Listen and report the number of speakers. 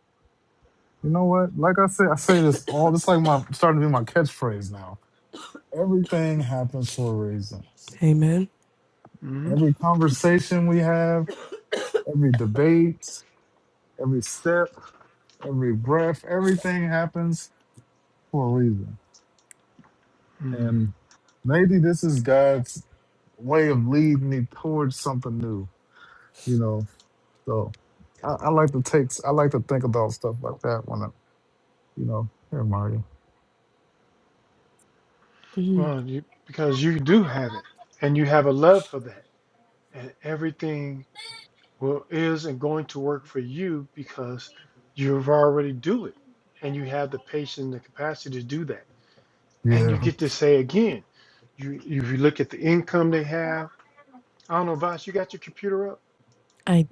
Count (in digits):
3